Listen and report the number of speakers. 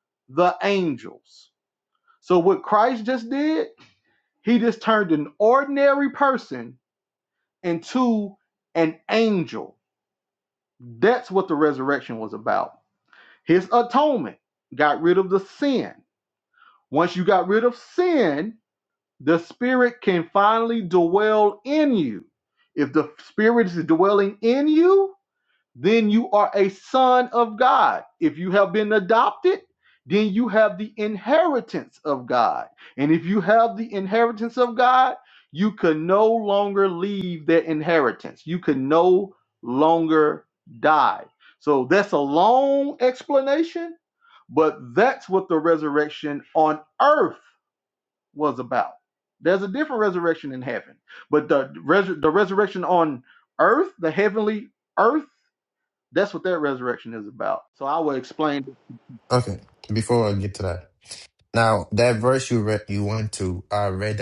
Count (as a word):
two